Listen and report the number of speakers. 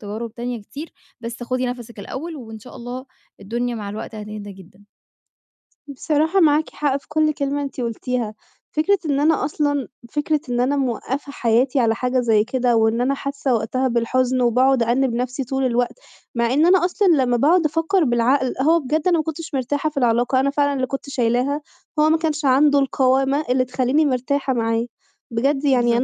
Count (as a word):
two